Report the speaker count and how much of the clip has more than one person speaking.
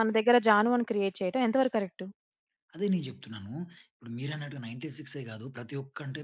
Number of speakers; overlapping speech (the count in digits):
2, under 1%